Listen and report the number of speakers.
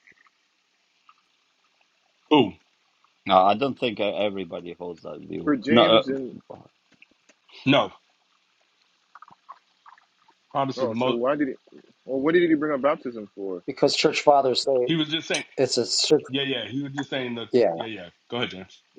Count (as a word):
four